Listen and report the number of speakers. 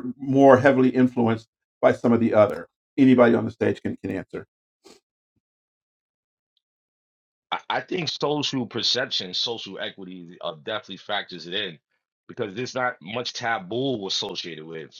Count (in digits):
2